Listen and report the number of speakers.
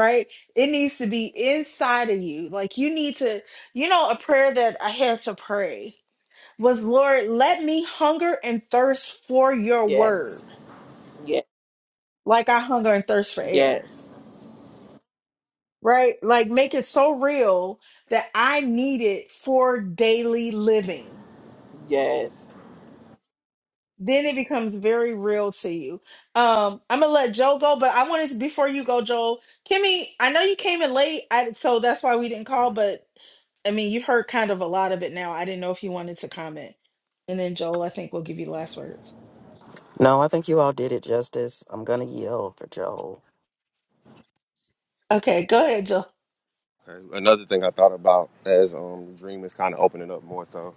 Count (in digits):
4